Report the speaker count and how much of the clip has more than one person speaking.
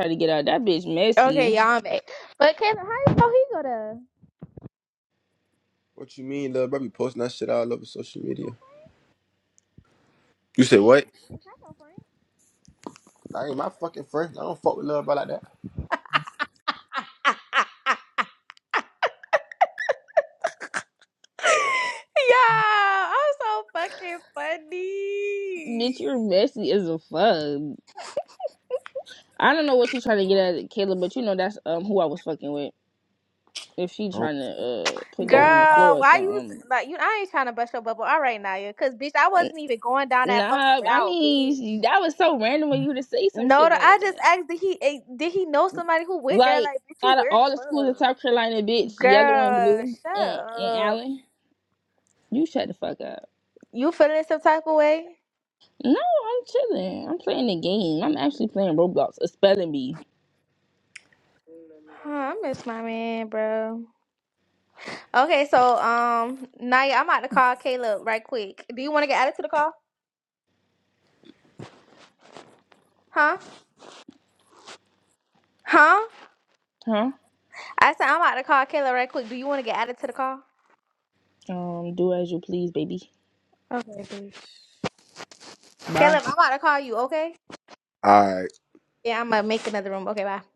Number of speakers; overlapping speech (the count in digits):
3, about 8%